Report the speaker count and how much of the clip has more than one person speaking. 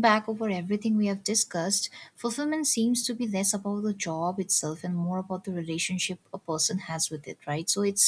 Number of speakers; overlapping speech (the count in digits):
1, no overlap